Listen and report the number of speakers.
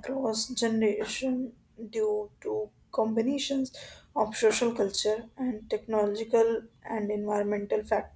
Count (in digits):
1